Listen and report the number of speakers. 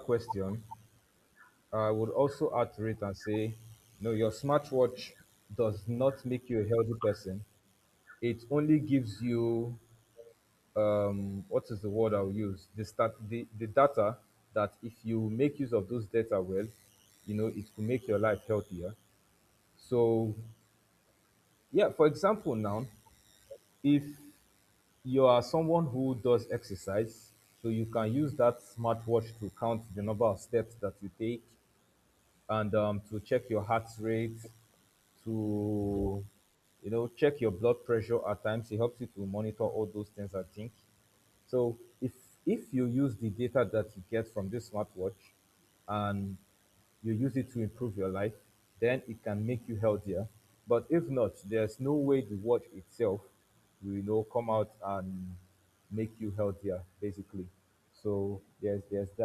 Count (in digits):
1